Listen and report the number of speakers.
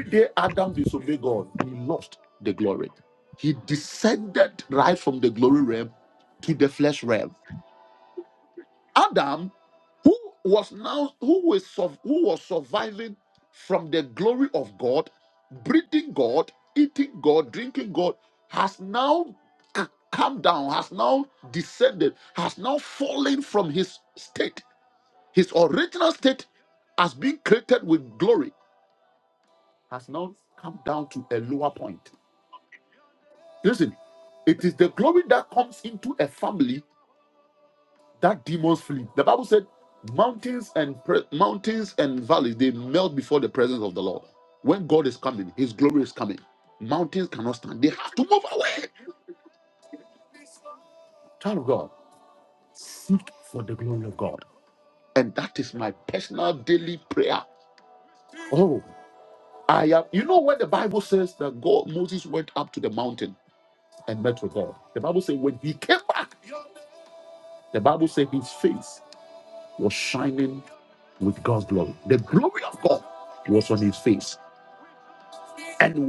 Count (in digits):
1